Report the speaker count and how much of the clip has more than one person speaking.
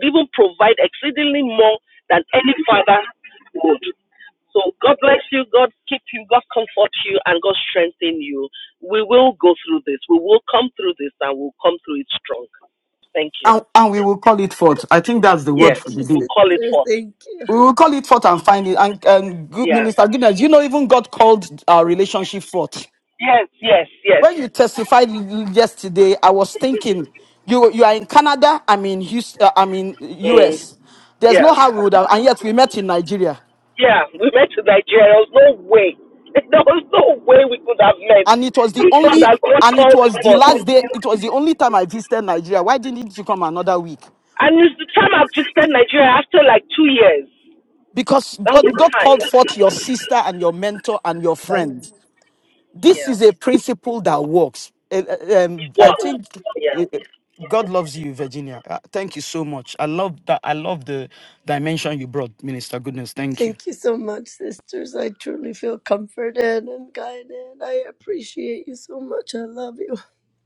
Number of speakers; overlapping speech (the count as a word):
three, about 8%